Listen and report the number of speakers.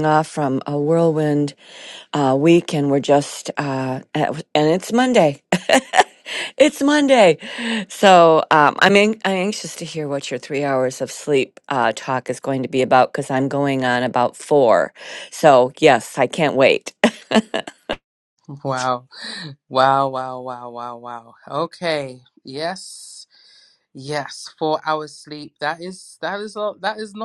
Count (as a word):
two